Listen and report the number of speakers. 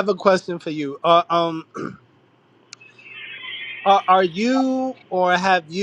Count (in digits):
1